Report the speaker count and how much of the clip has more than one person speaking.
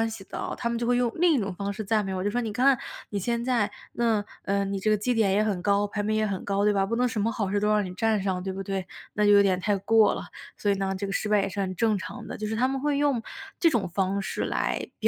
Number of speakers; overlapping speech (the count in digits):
1, no overlap